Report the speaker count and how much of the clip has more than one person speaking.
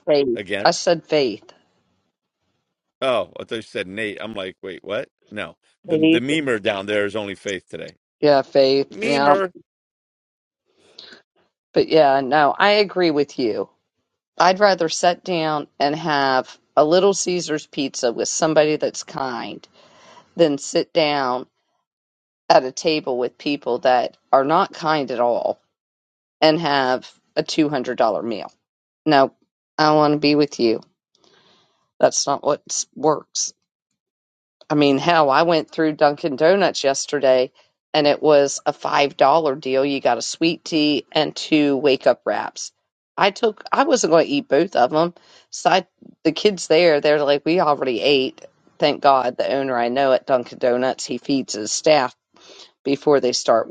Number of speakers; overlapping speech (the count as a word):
two, about 2%